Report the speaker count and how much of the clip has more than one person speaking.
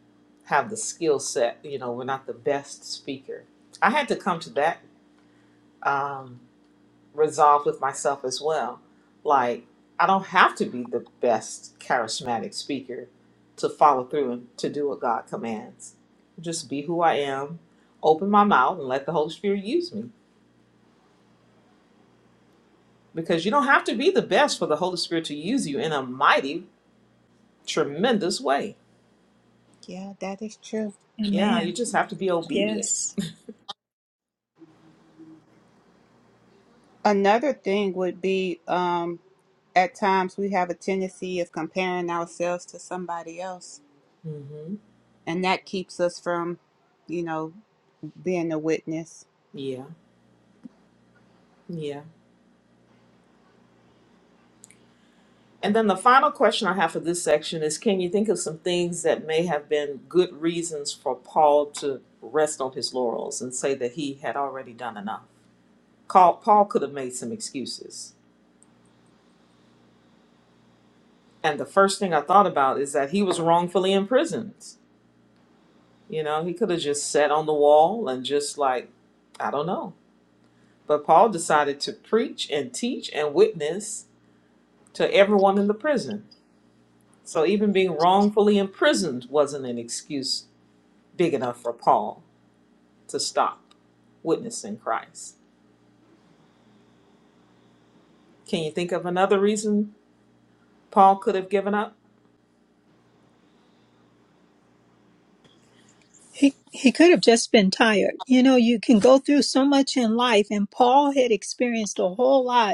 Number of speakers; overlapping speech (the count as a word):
three, about 1%